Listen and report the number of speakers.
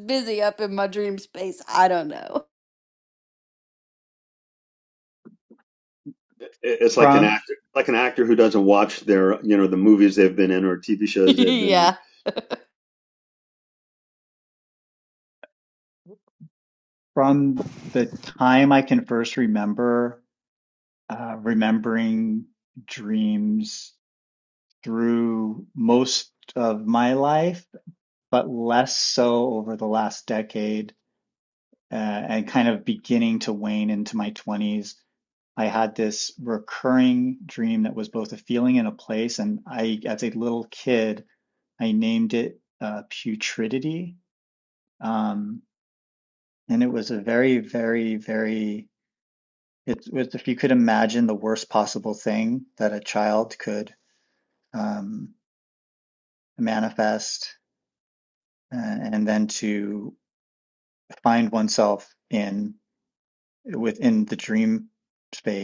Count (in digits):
3